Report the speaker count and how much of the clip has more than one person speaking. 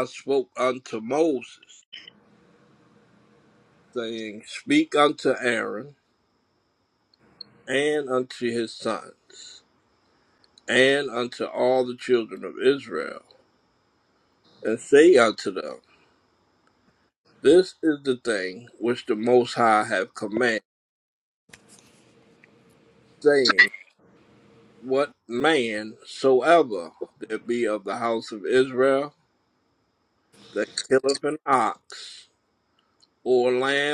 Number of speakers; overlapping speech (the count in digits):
1, no overlap